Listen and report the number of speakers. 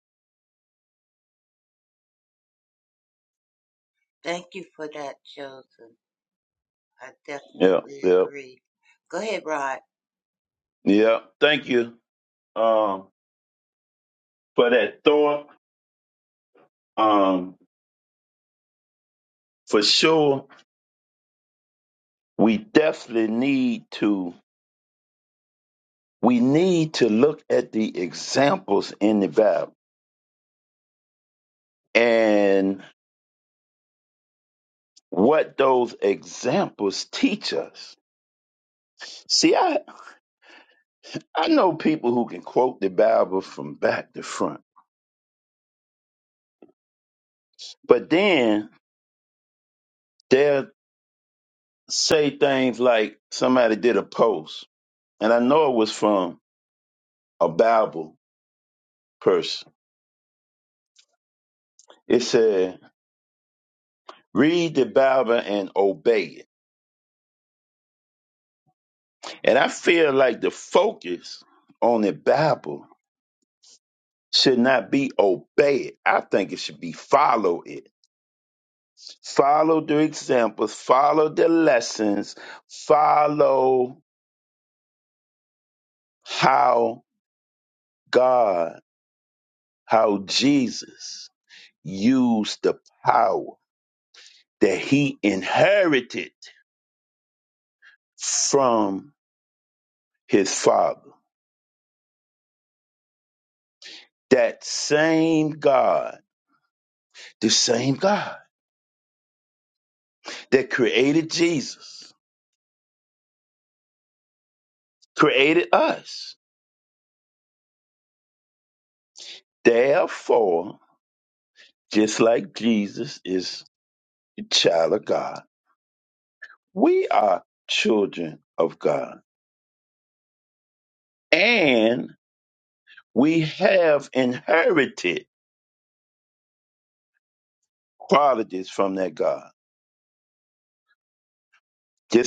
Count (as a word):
two